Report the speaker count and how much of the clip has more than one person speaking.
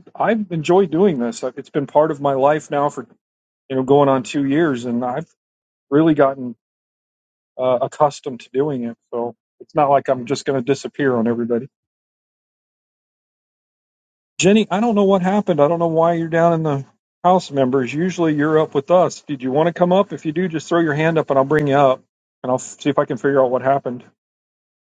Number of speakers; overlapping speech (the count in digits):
1, no overlap